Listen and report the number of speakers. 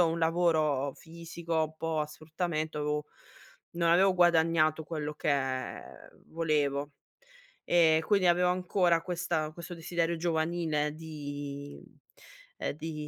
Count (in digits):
1